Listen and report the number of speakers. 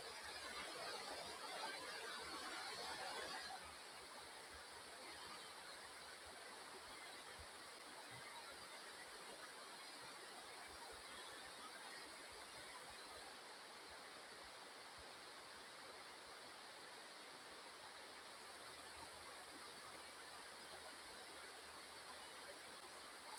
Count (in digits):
0